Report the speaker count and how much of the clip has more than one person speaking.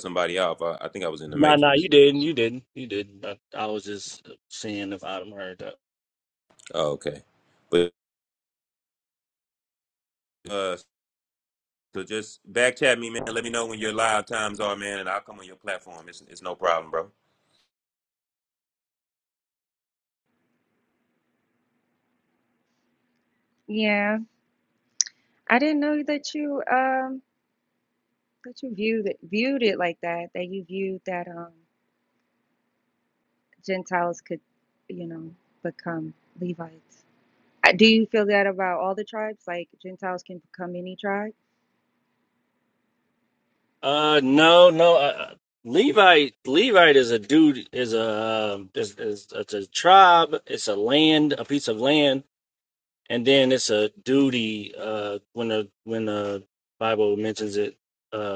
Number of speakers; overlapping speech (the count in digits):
3, about 1%